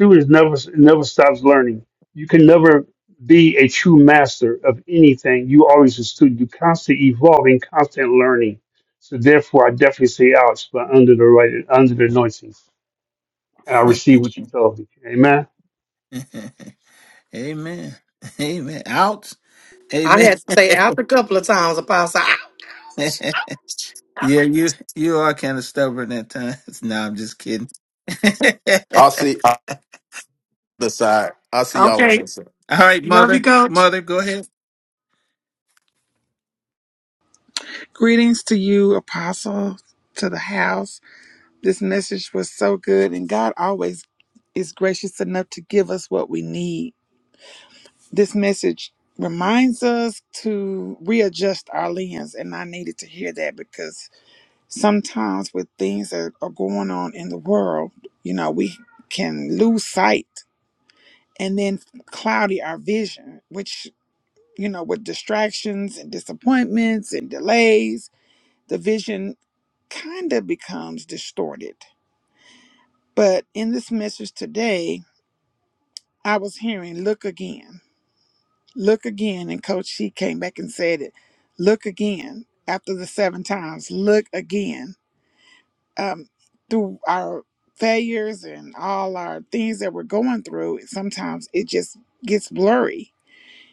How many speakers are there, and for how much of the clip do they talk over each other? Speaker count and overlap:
5, about 2%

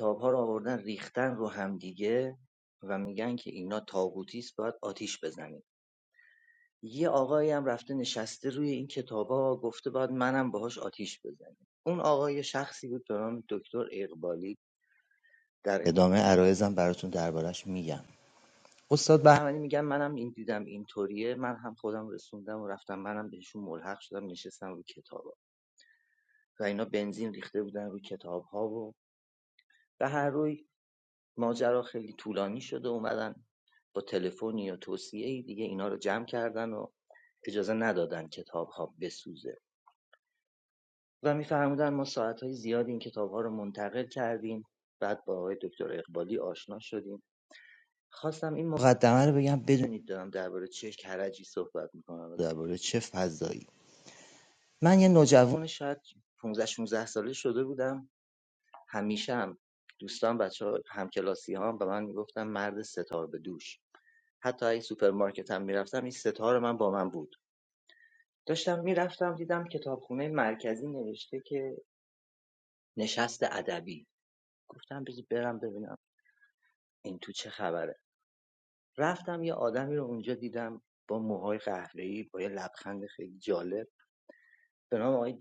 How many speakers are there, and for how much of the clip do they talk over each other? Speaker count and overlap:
1, no overlap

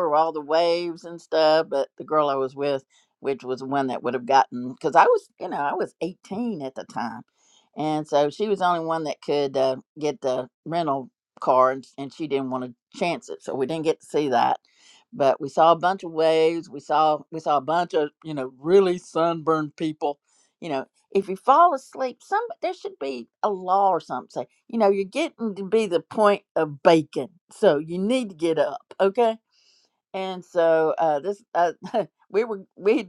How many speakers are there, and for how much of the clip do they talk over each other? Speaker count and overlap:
1, no overlap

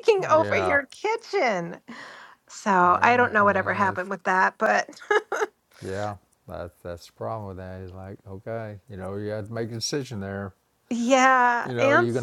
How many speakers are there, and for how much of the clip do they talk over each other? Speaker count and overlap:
2, about 17%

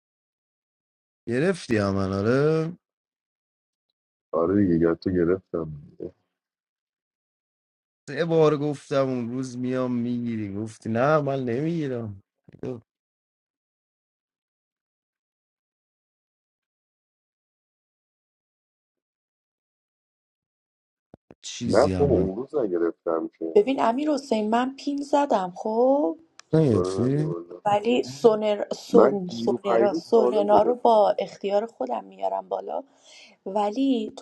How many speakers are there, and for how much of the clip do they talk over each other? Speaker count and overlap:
3, about 10%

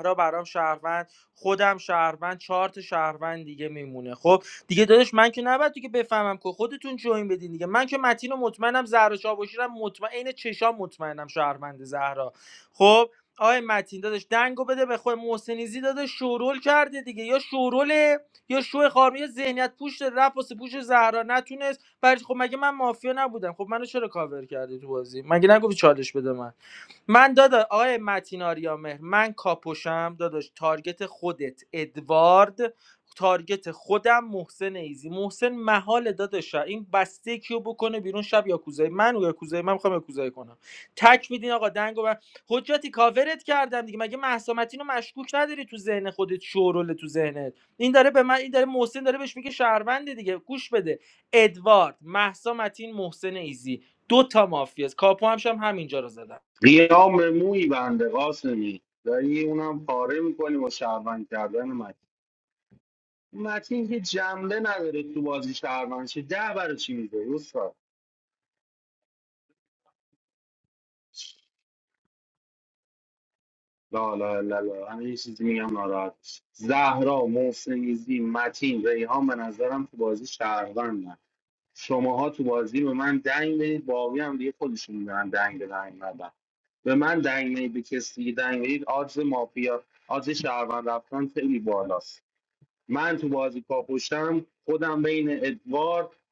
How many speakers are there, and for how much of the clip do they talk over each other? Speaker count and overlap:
2, no overlap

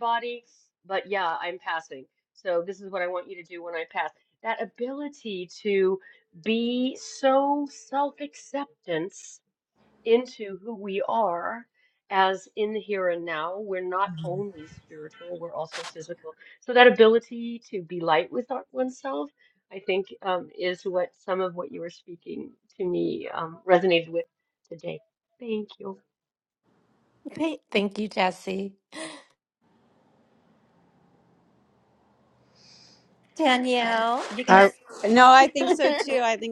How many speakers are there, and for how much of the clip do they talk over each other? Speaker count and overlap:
3, under 1%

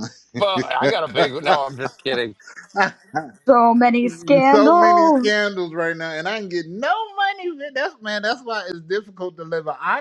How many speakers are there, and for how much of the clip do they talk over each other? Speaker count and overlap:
3, about 8%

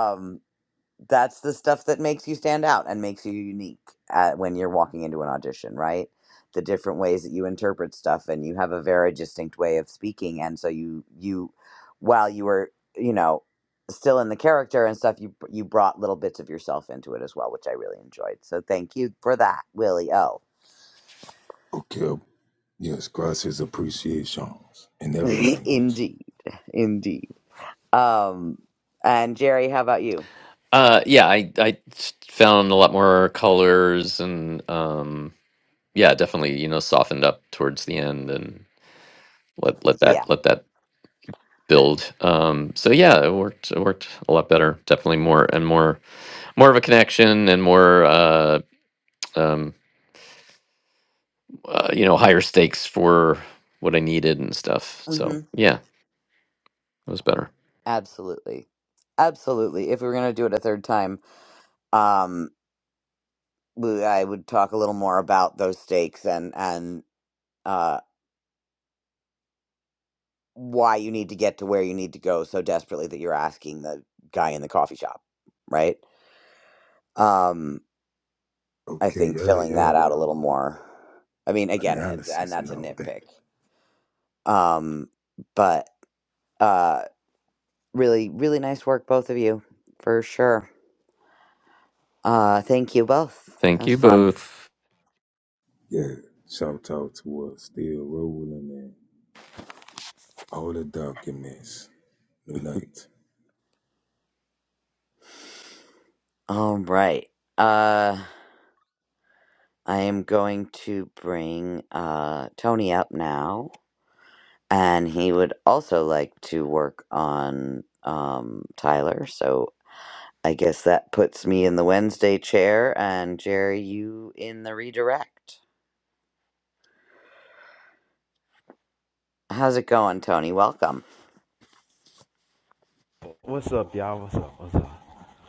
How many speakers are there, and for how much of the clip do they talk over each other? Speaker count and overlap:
4, about 3%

